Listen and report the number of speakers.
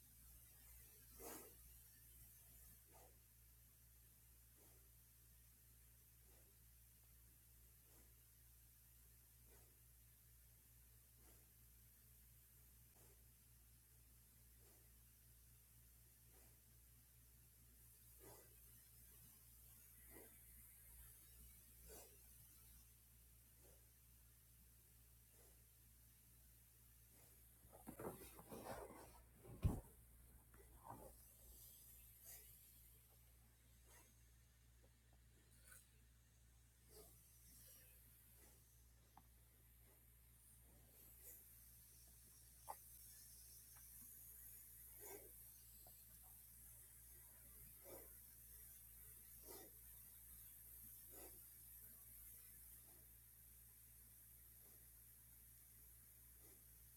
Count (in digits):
0